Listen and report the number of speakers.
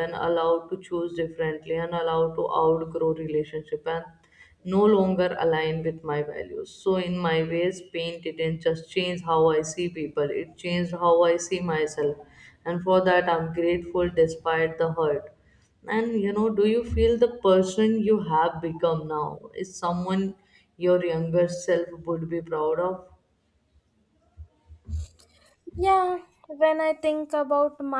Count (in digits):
2